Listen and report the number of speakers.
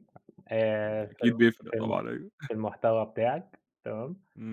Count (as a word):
two